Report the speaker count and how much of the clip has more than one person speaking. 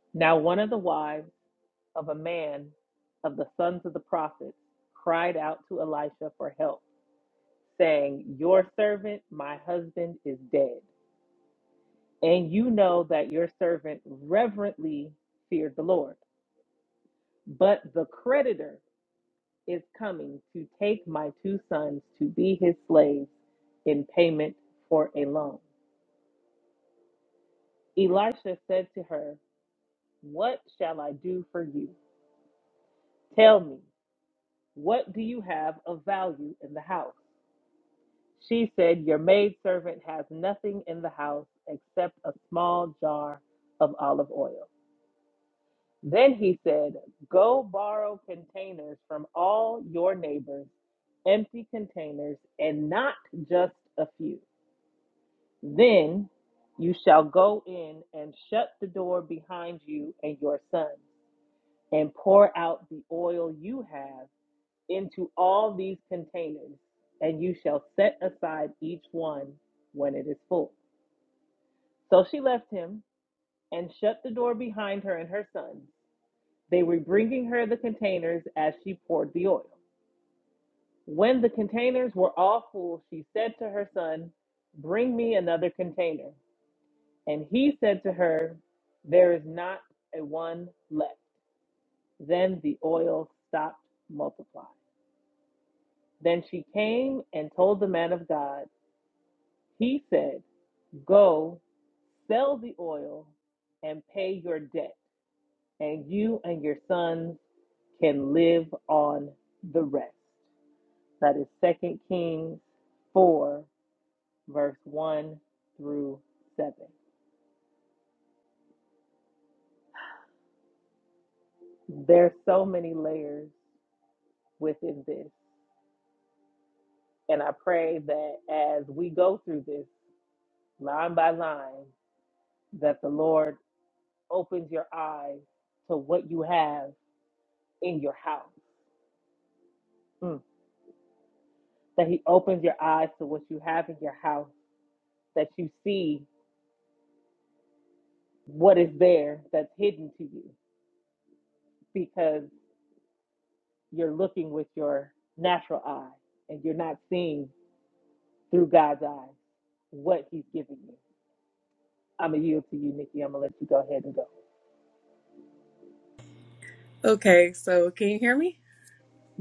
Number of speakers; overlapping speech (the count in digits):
2, no overlap